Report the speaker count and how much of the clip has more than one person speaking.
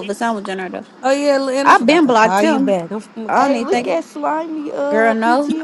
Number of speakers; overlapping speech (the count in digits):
3, about 46%